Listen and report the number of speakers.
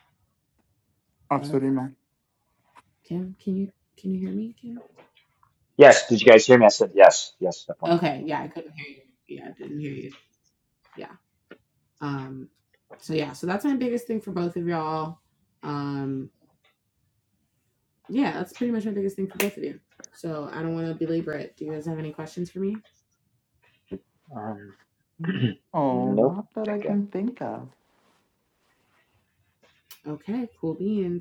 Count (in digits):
3